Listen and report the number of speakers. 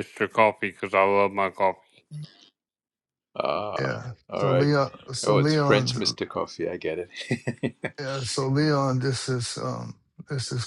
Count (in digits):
3